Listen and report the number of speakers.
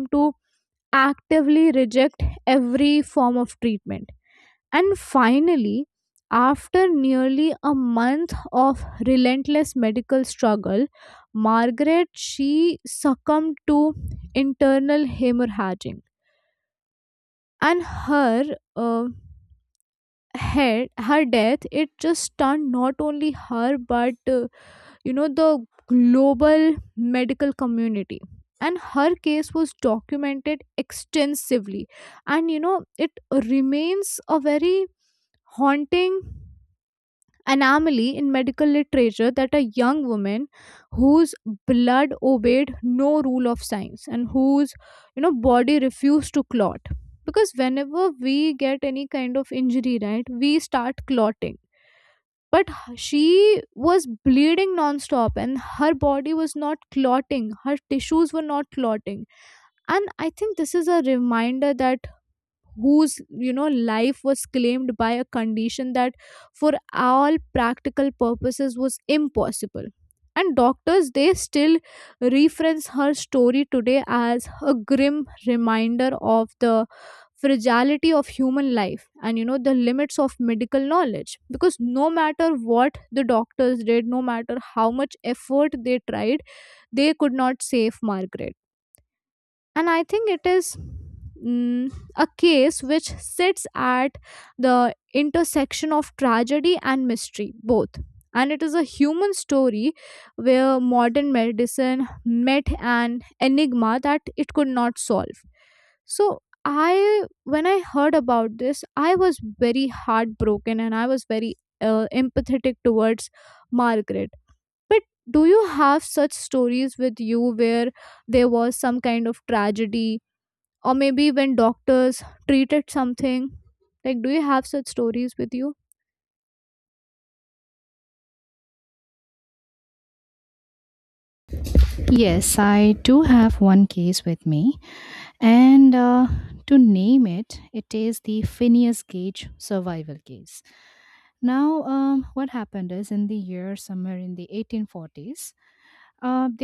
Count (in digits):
2